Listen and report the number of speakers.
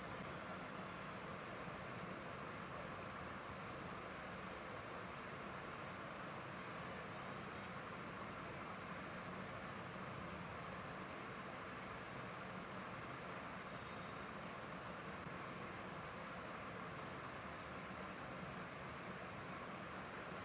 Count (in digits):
0